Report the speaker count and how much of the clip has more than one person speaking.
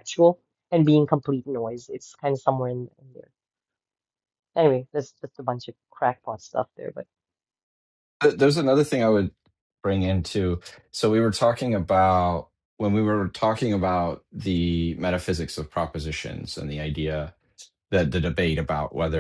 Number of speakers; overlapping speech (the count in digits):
2, no overlap